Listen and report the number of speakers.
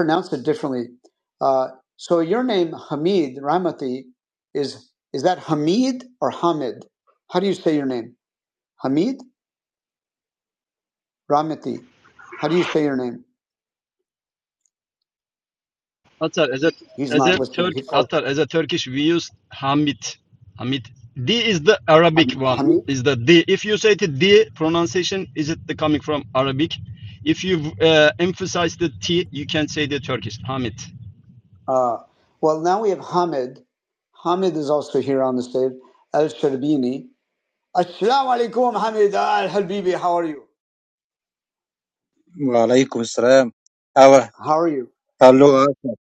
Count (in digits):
3